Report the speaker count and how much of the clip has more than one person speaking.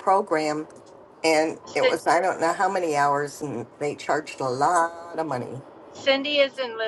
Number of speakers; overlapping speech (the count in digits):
2, about 5%